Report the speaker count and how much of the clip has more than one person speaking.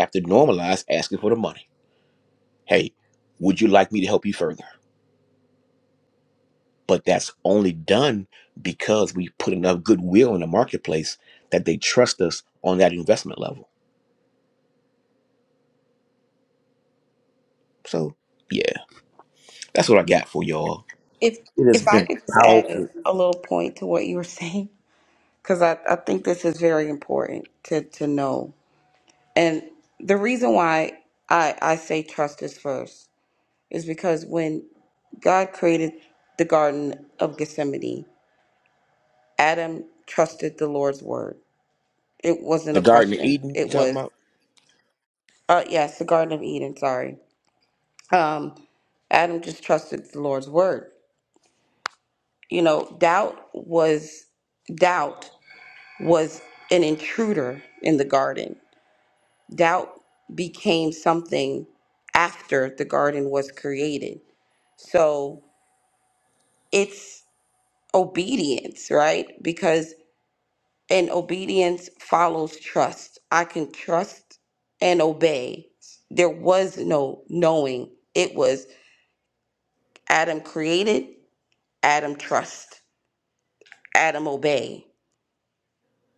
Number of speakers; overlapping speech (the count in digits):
2, about 3%